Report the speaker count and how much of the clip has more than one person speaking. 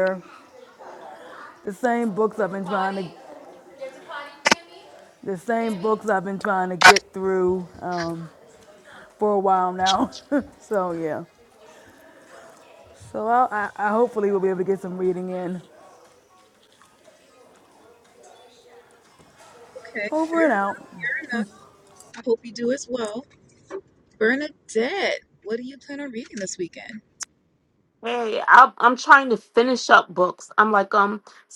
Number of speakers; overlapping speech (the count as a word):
three, about 2%